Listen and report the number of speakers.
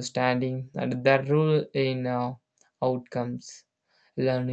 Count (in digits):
1